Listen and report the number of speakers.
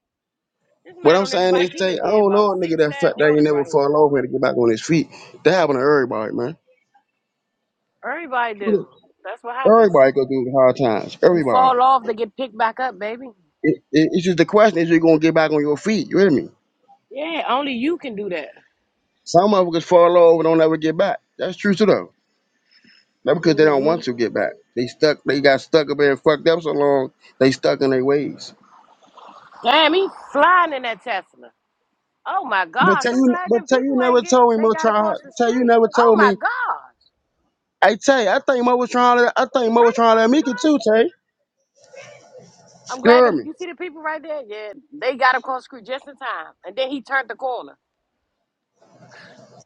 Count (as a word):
two